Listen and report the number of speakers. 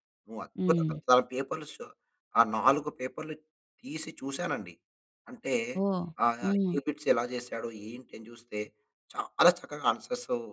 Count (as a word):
two